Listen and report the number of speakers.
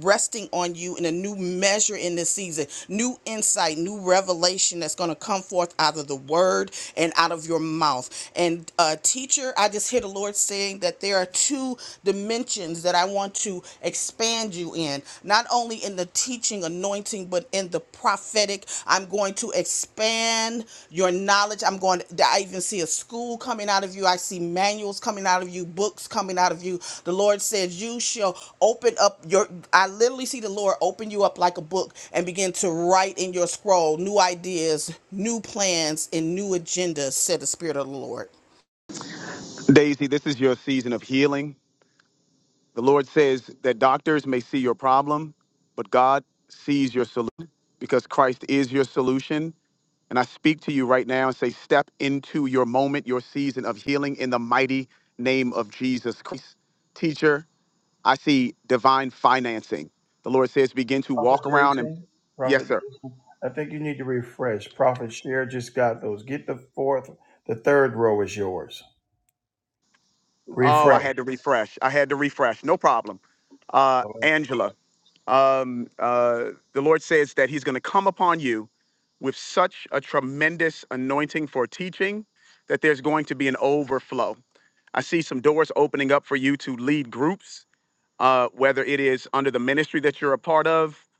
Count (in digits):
3